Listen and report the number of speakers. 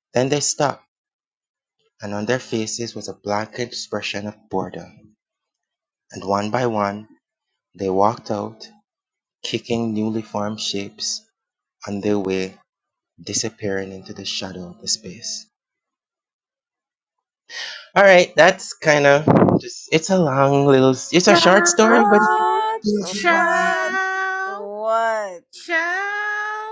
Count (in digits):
3